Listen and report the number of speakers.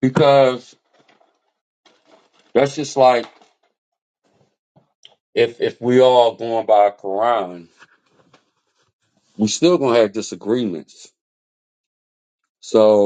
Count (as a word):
one